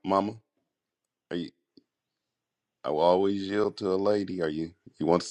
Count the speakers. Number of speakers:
1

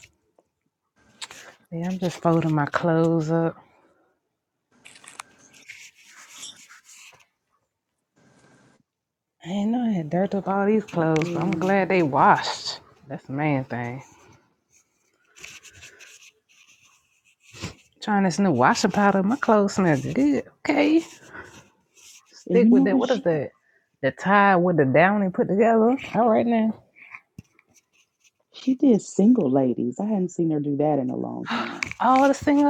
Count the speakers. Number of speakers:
2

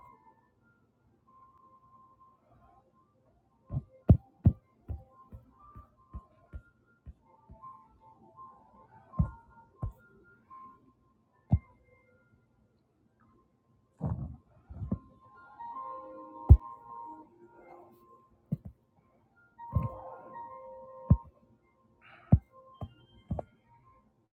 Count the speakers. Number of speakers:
0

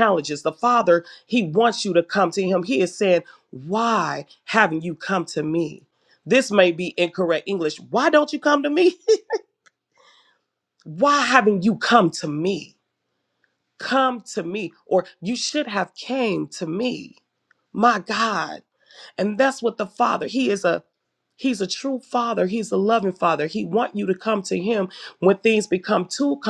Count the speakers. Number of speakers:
1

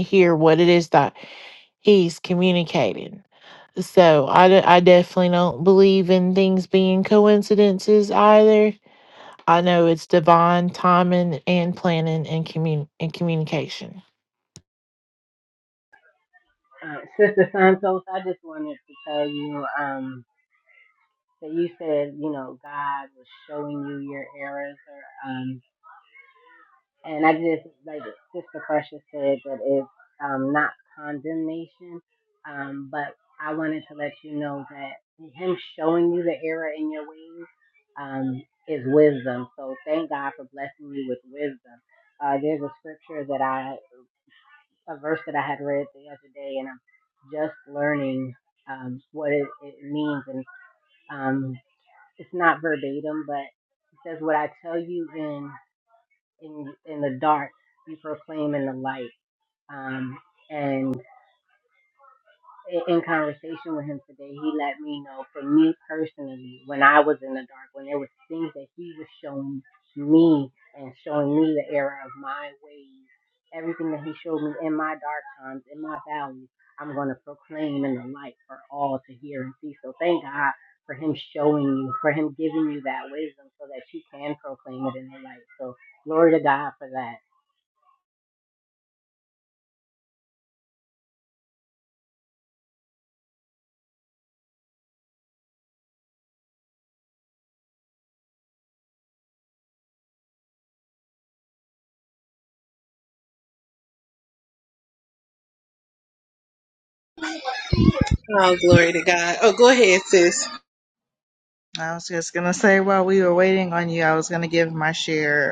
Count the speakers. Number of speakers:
4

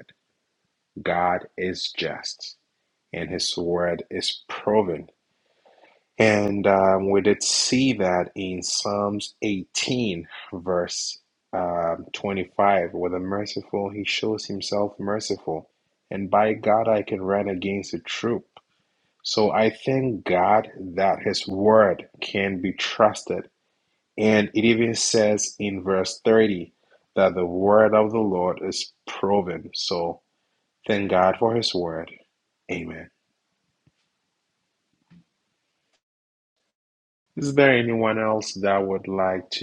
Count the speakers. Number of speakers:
1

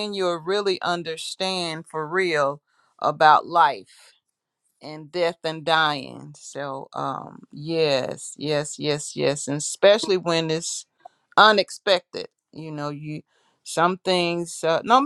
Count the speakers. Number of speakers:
1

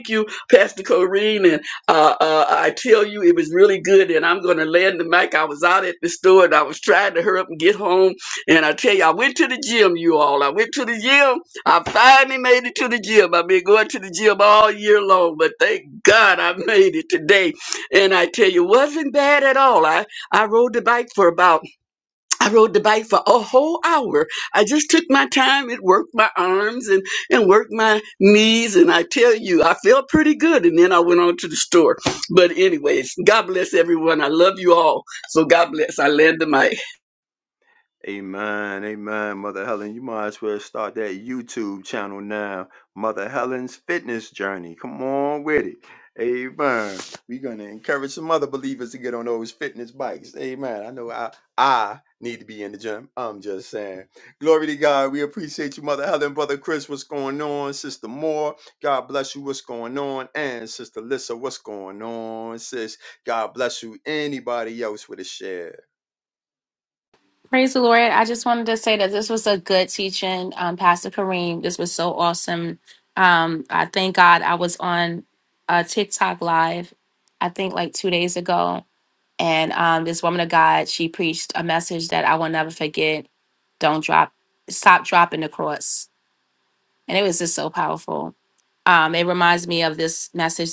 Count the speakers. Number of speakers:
3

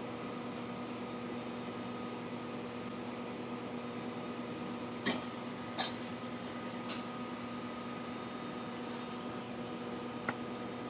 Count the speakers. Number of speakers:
0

